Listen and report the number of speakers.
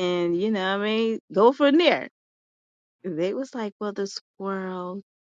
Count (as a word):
one